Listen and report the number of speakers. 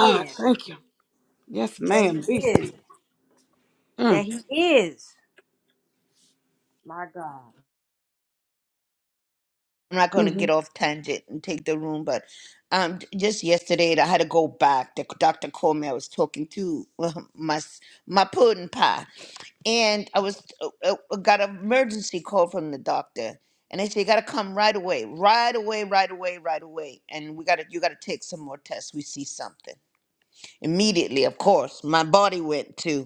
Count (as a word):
three